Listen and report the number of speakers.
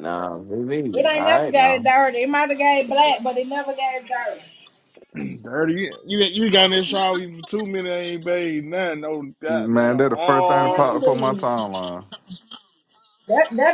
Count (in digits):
4